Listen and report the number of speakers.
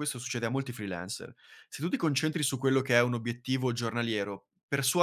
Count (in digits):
1